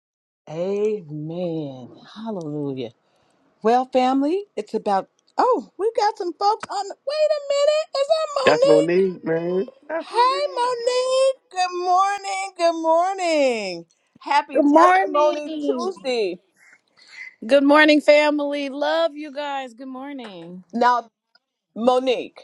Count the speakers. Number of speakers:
3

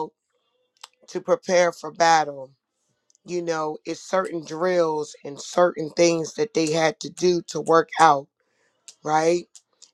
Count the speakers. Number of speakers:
1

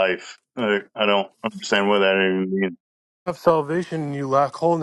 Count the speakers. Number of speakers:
2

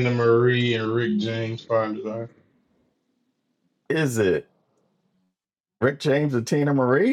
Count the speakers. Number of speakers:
2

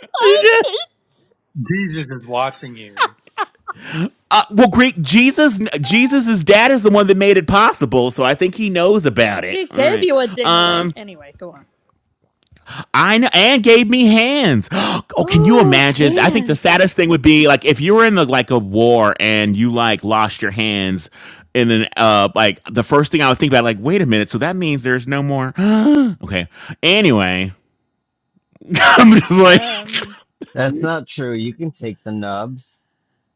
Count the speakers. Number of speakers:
4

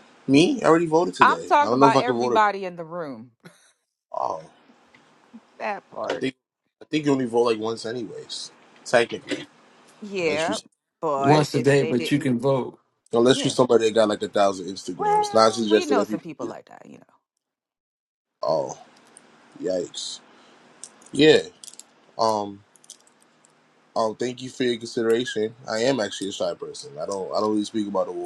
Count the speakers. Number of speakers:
3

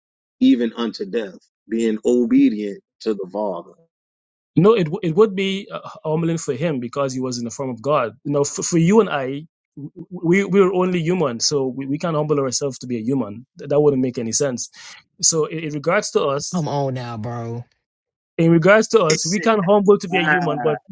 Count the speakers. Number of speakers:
3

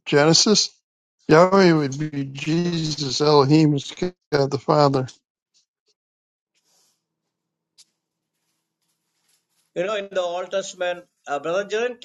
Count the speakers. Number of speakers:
2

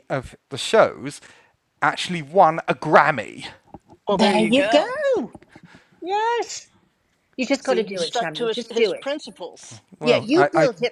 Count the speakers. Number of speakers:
3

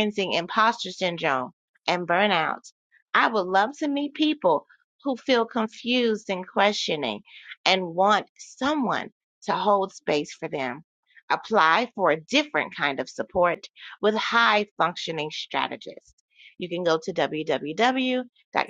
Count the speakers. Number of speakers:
1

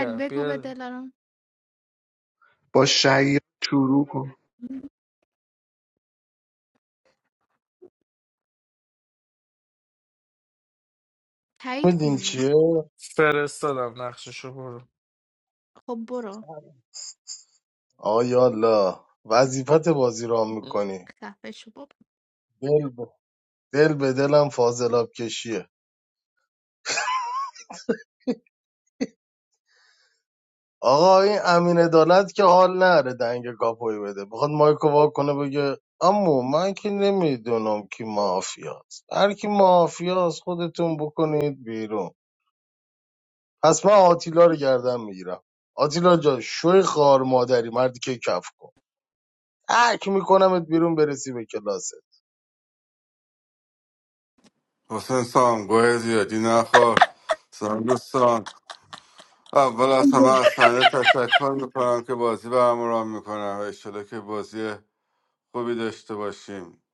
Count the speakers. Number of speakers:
5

